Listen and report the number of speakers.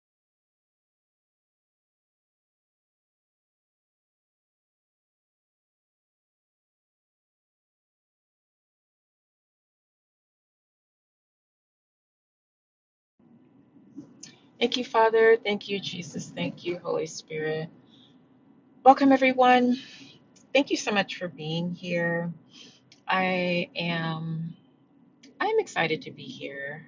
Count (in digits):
1